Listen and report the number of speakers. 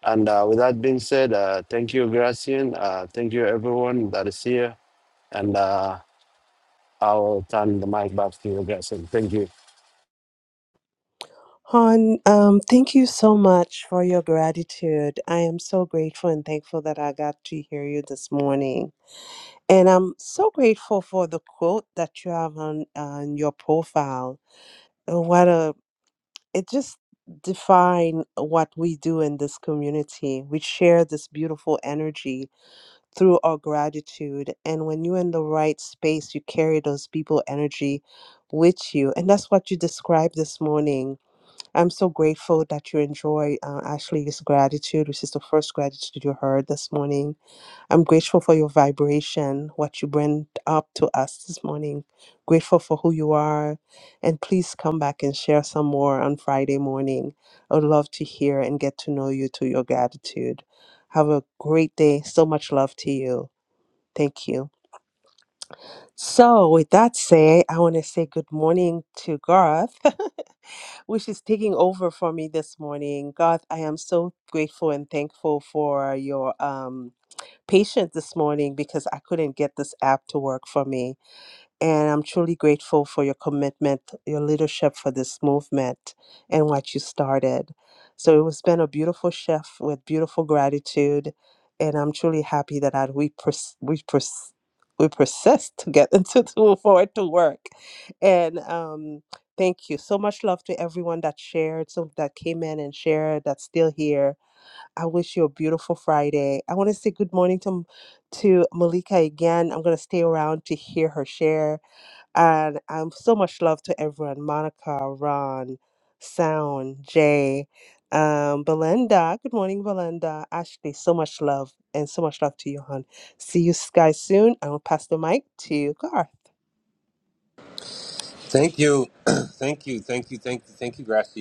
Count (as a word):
three